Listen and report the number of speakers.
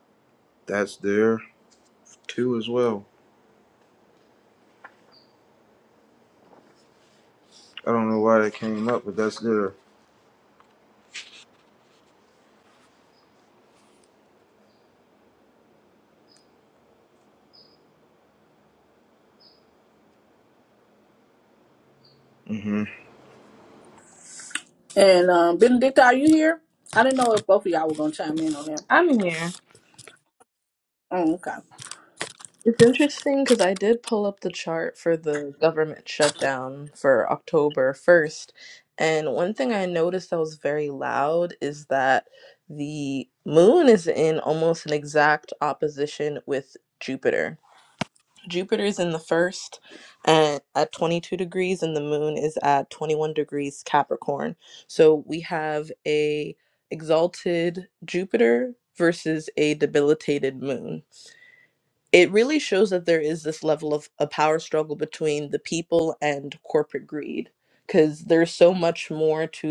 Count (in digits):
3